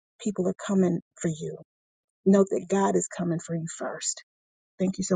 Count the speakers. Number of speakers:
1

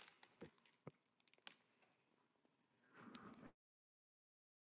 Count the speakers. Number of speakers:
0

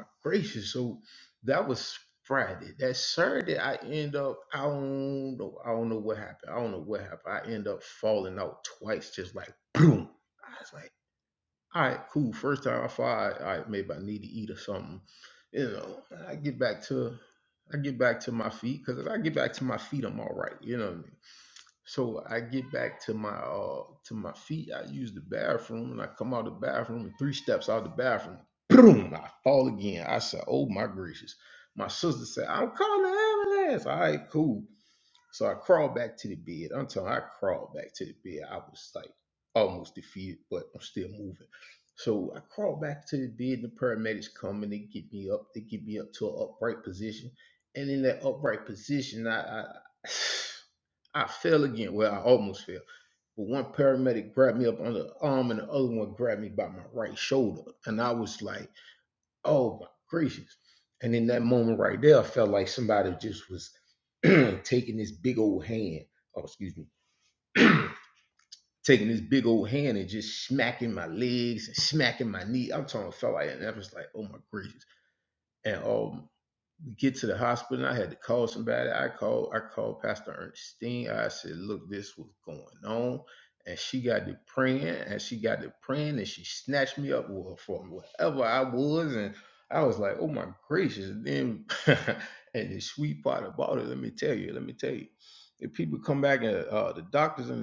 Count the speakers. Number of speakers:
1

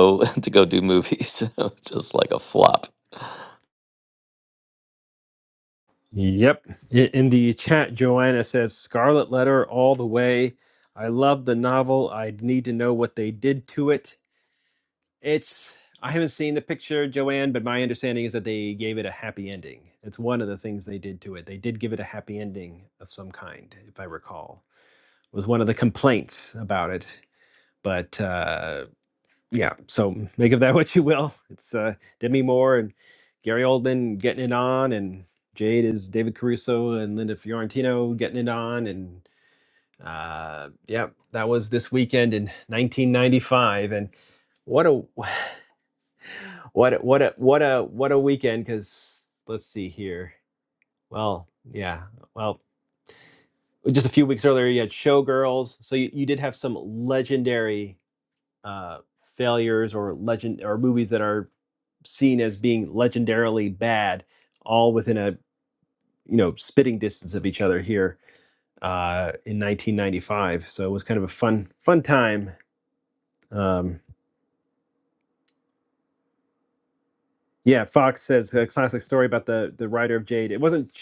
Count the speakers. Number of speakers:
2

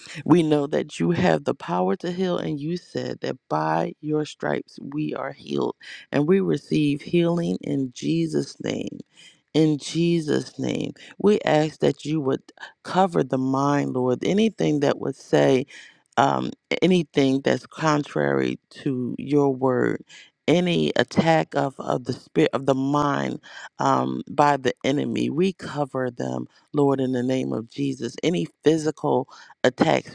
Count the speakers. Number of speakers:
1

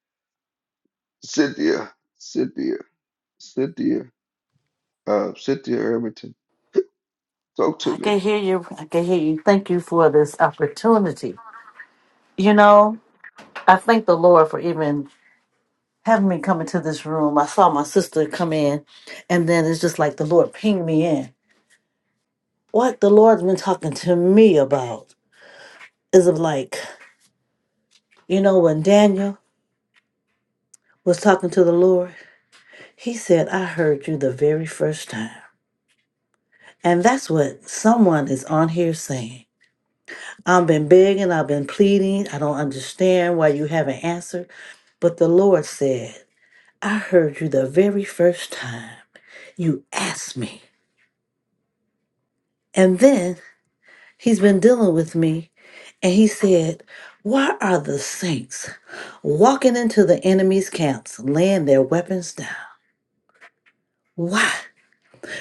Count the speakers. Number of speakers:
2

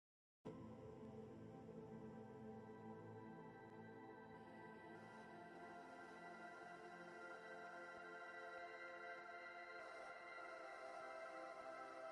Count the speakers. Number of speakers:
0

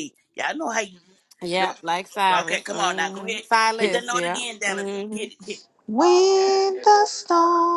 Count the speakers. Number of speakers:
3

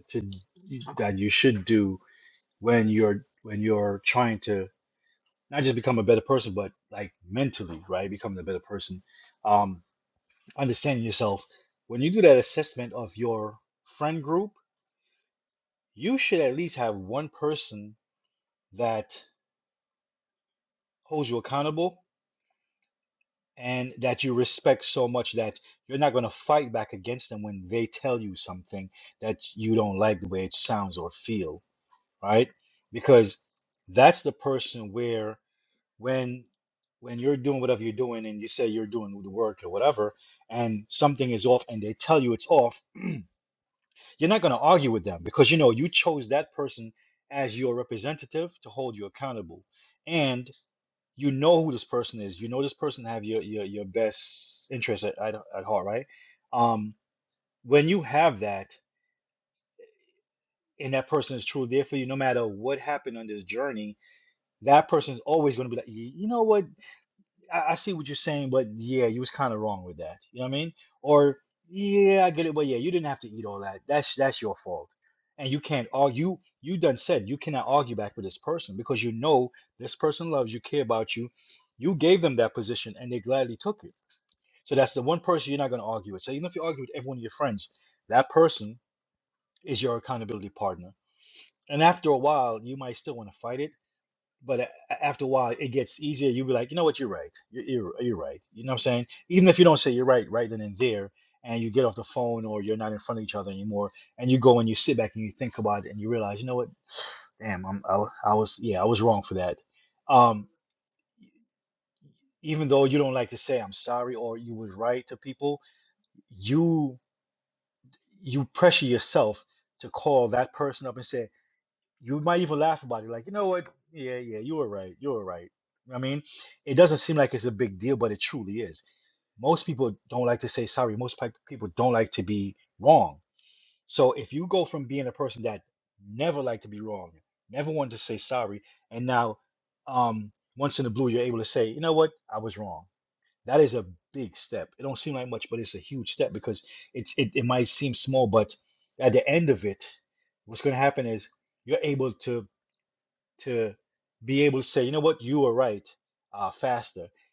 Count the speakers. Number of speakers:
1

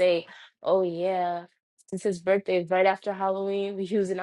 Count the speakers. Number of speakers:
1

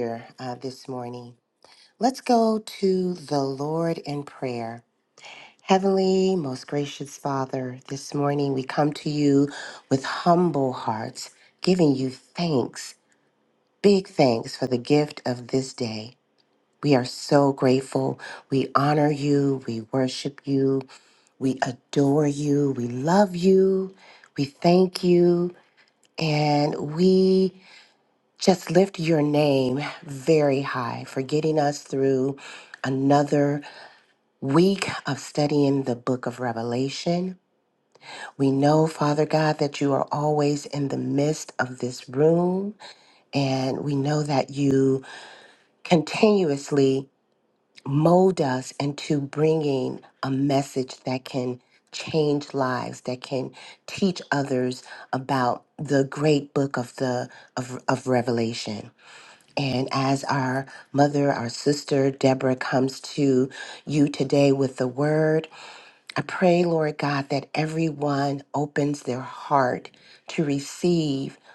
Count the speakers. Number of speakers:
1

